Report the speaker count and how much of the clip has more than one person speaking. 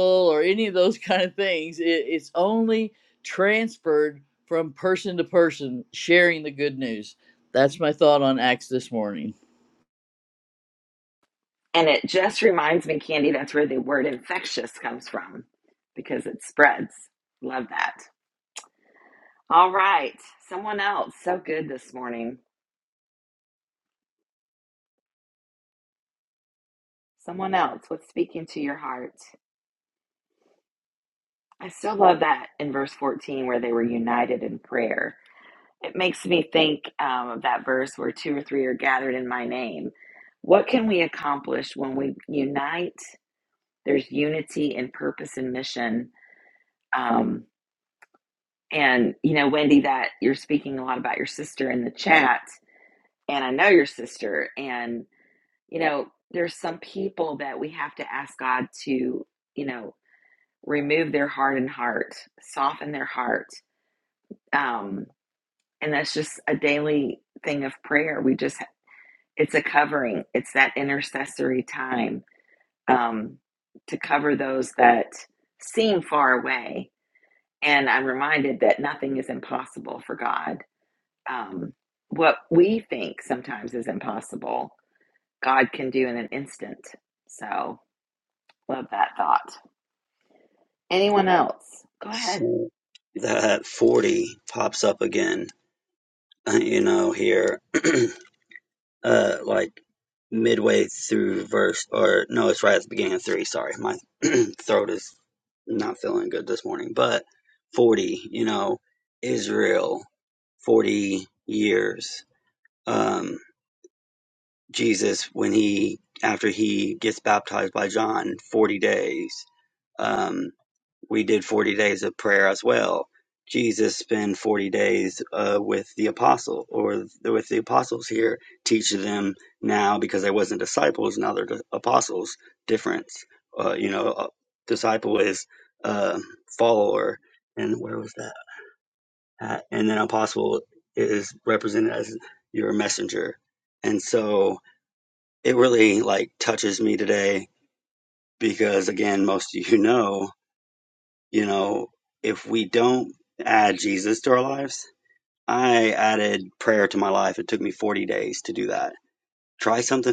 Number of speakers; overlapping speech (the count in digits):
3, under 1%